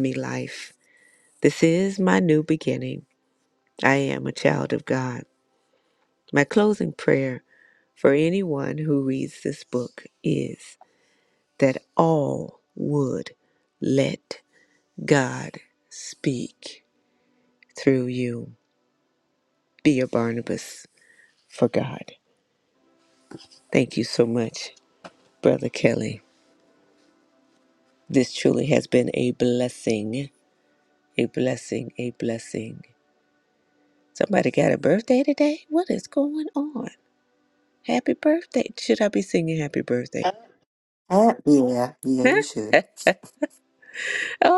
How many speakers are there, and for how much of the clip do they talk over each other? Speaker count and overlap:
two, no overlap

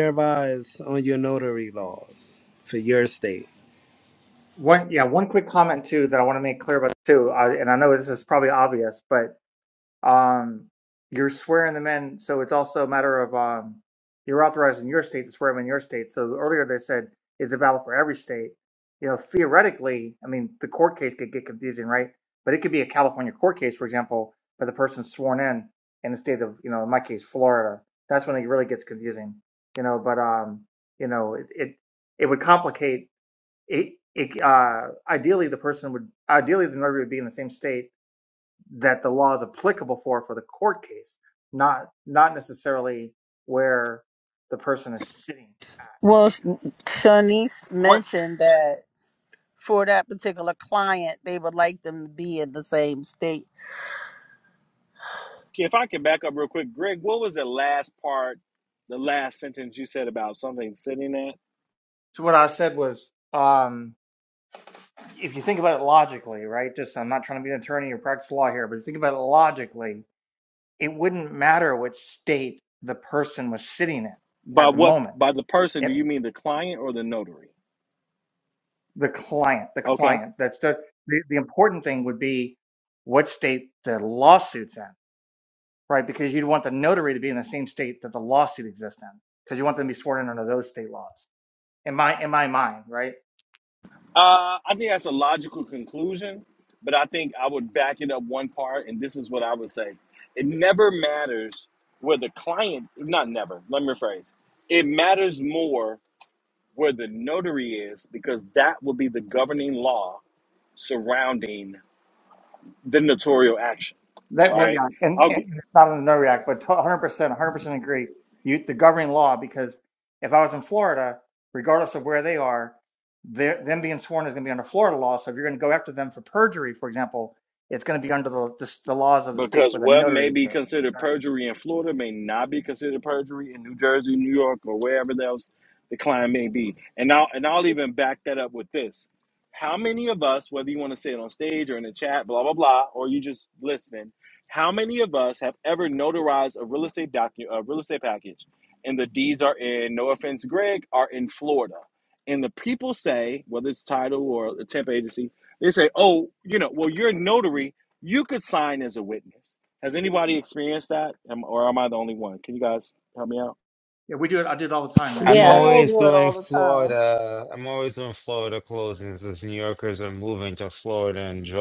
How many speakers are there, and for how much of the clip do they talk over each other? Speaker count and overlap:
five, about 3%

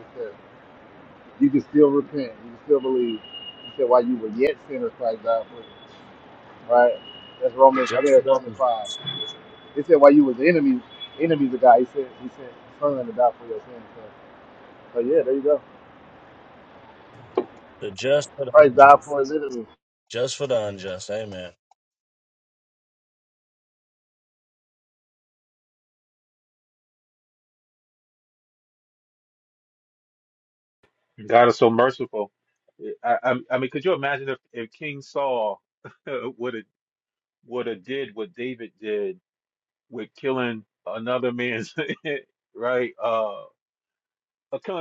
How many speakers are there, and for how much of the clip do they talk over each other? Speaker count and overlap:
three, about 3%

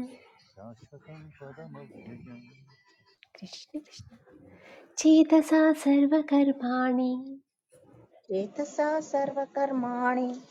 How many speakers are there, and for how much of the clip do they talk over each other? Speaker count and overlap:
three, no overlap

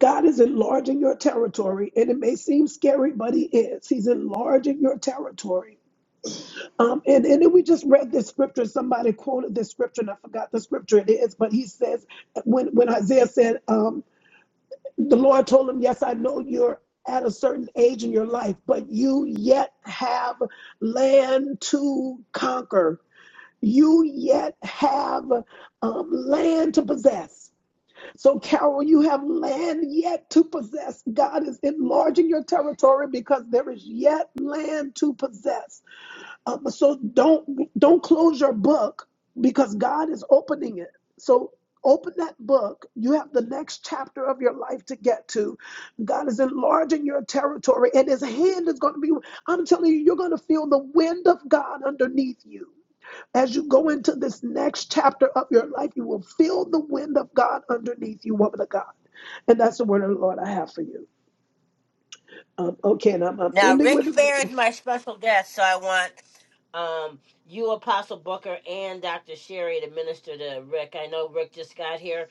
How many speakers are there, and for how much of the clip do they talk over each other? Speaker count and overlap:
two, about 1%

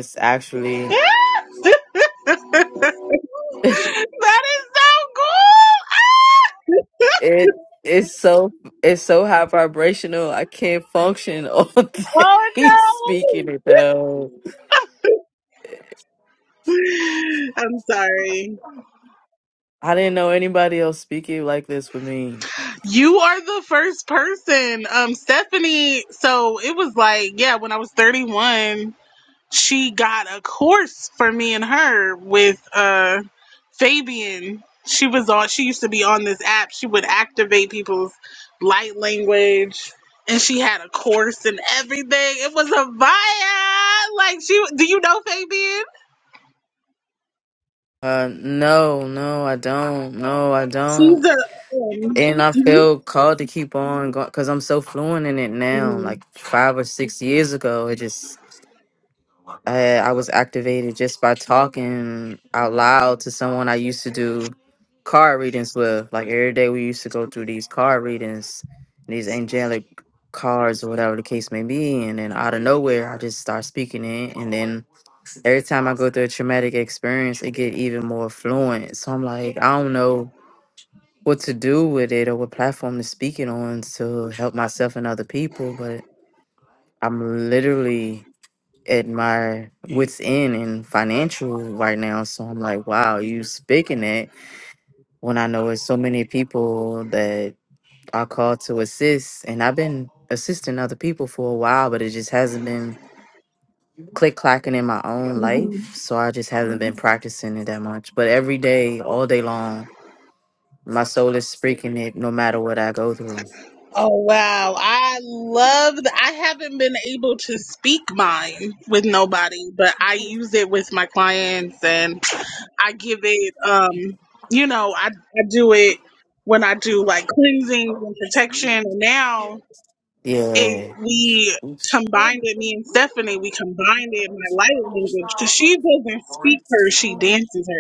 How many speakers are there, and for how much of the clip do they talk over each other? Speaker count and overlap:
two, under 1%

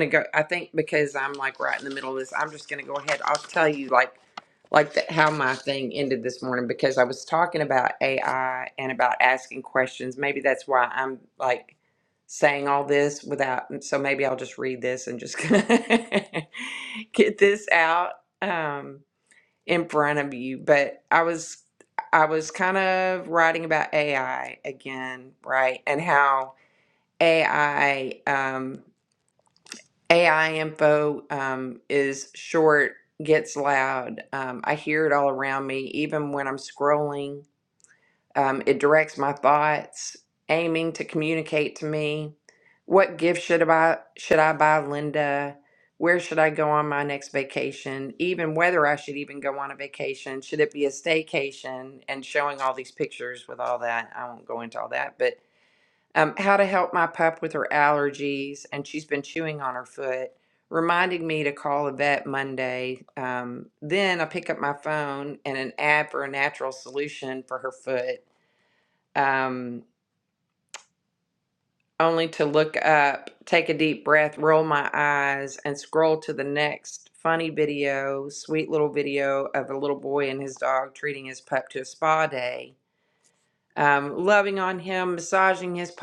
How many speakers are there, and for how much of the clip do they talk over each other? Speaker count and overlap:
one, no overlap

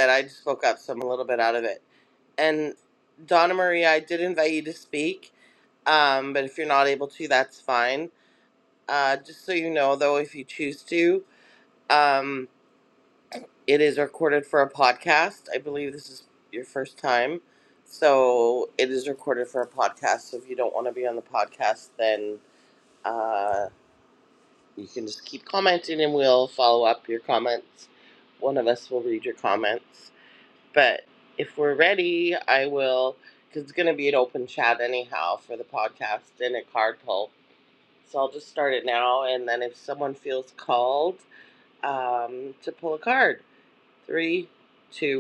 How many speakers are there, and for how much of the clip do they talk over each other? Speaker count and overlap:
one, no overlap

